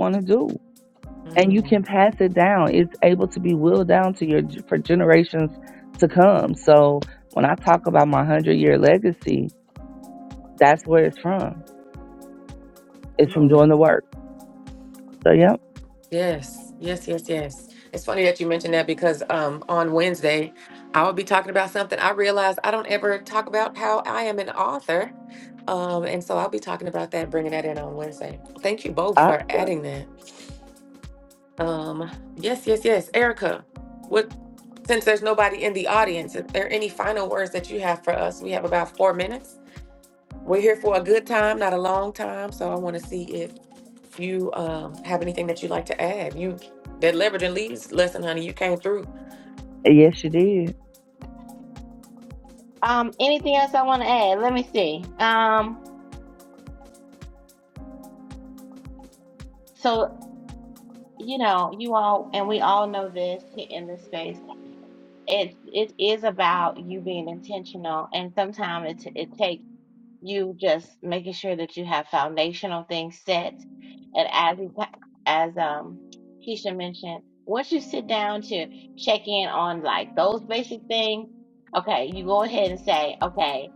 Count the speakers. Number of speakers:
3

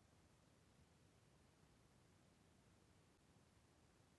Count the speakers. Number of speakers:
0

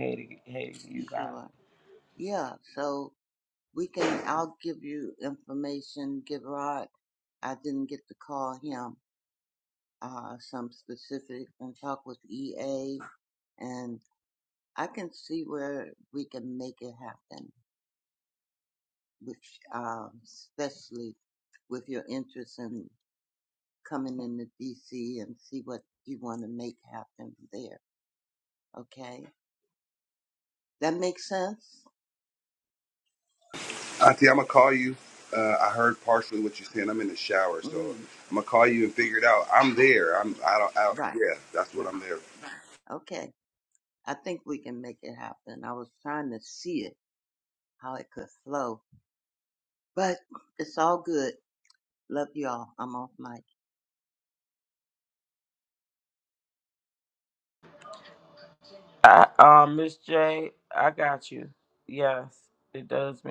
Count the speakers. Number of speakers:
3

